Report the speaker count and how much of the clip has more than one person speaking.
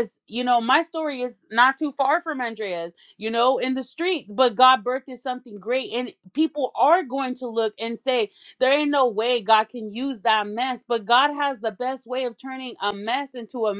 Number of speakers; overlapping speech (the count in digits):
1, no overlap